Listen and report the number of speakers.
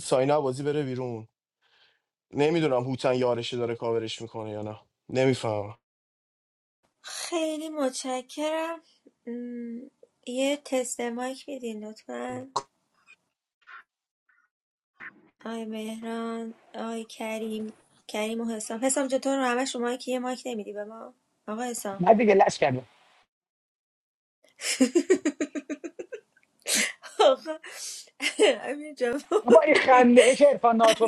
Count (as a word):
three